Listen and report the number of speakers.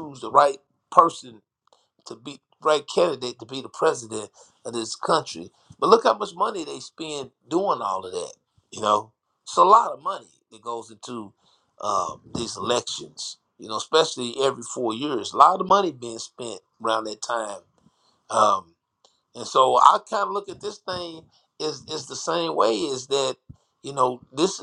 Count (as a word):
one